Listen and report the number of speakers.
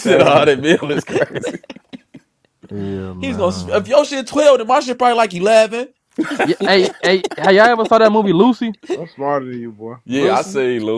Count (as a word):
four